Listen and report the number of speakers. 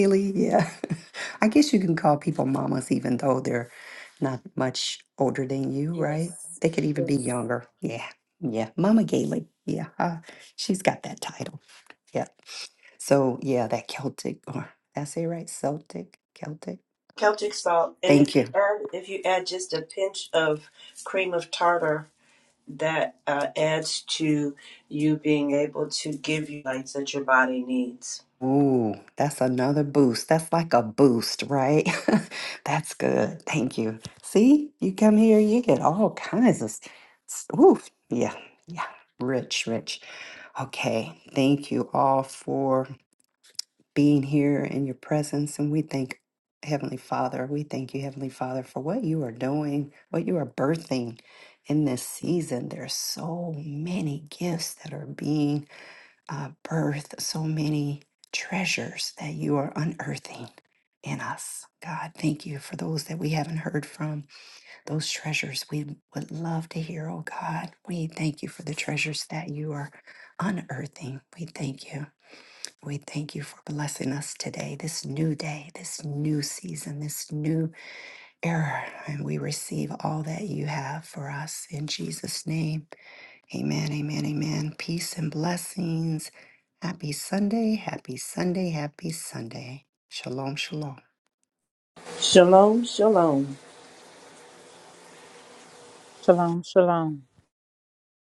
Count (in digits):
3